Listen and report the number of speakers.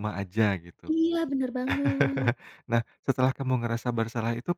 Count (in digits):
2